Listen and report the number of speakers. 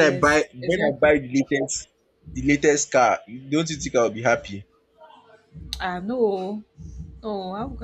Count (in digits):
2